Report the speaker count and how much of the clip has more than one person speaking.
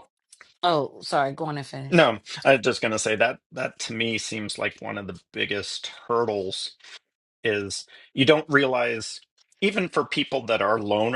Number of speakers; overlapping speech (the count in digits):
2, about 1%